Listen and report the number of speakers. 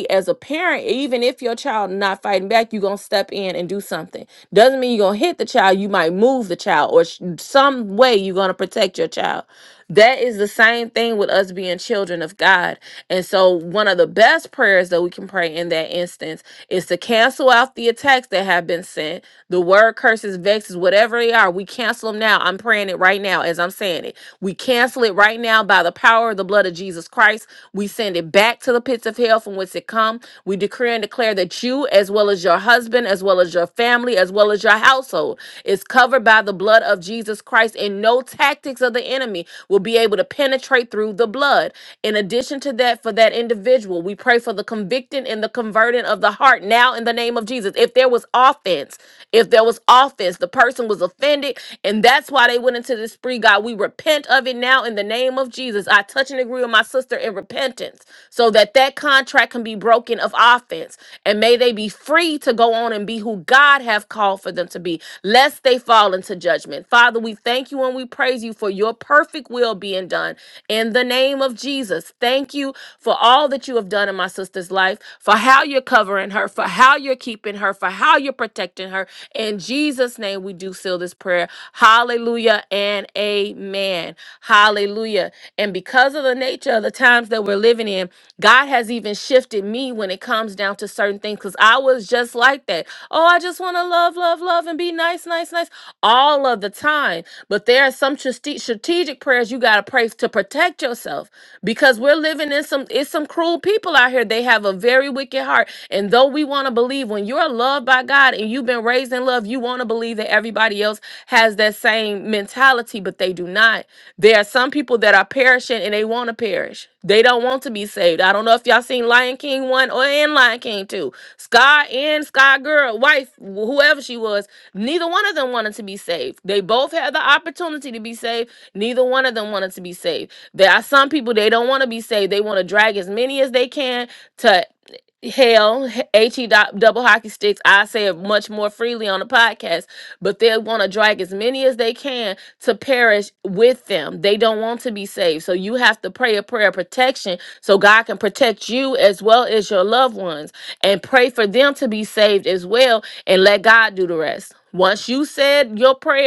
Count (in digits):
1